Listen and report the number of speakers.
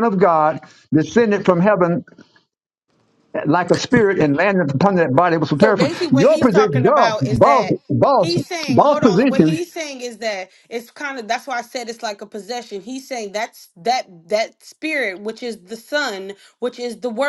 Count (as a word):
two